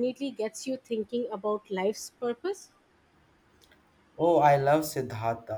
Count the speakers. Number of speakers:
2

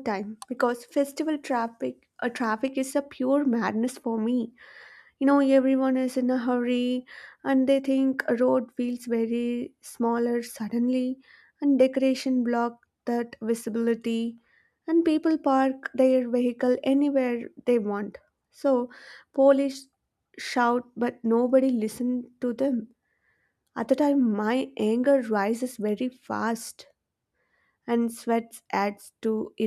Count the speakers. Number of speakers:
1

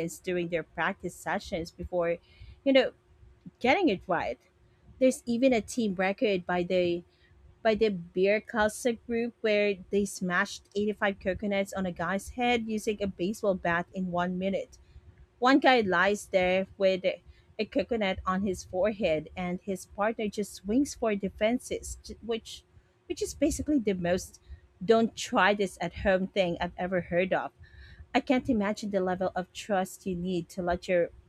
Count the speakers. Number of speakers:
1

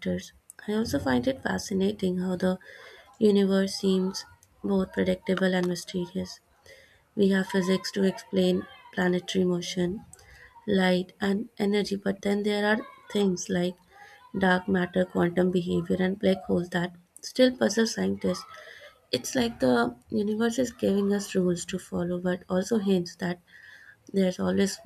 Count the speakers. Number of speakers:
1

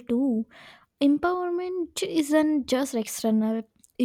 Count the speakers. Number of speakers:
1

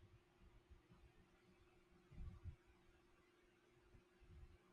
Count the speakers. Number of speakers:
0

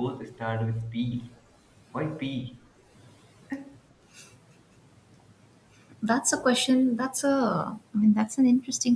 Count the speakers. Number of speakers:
2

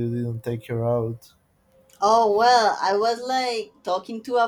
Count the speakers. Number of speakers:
2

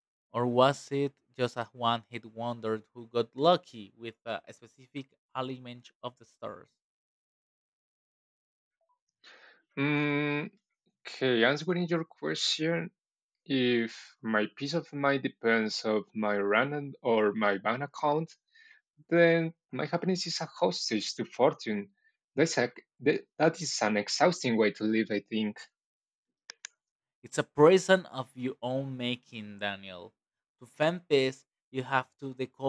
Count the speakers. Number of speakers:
2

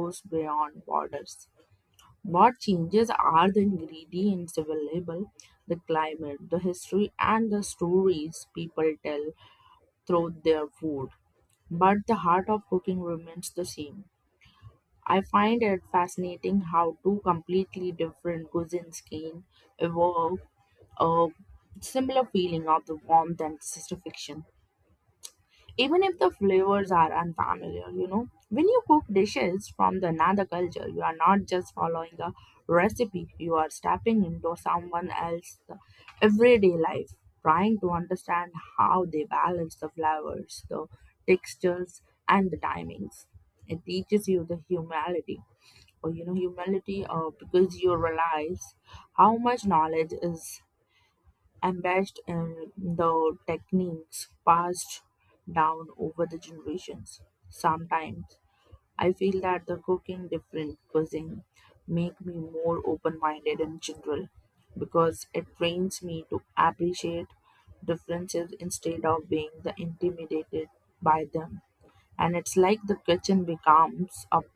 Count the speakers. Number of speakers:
1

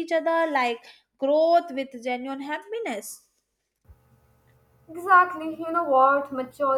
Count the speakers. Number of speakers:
2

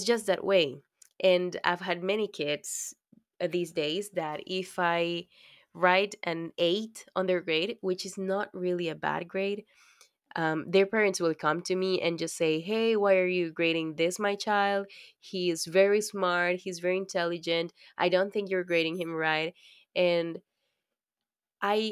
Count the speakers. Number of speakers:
1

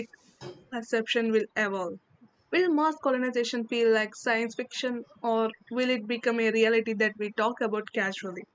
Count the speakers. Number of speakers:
1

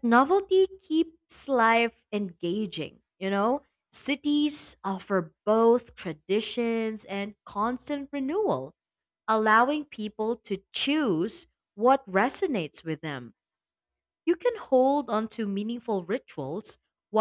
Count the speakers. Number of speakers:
1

